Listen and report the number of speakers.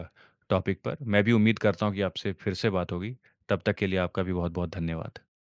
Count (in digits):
1